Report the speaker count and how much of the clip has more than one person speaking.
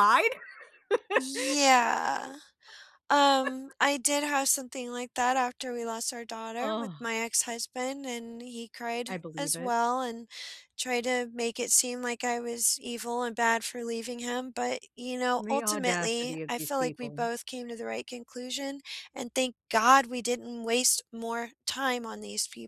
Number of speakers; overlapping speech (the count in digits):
2, about 12%